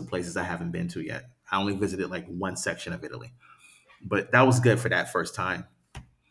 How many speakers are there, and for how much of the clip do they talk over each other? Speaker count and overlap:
one, no overlap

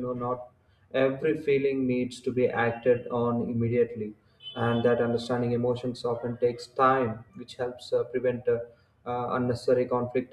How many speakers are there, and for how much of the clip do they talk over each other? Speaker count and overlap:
one, no overlap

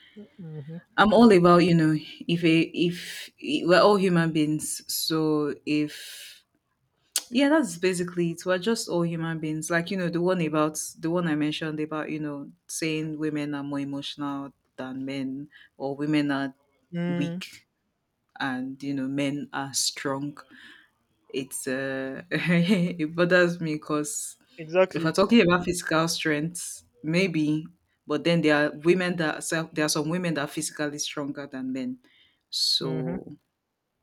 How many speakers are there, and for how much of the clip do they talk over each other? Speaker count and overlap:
two, about 3%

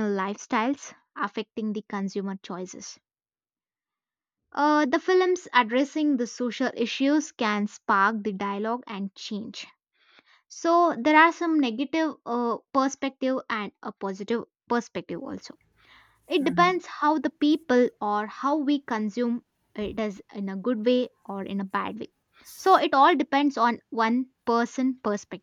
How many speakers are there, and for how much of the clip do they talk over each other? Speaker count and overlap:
one, no overlap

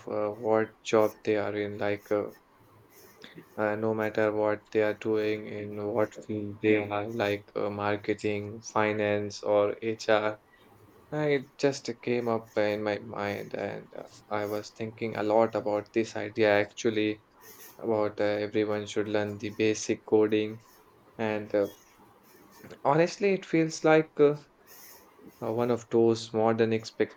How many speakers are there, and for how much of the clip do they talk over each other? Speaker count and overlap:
one, no overlap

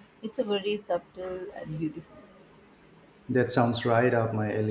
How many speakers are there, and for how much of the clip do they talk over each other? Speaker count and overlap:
two, no overlap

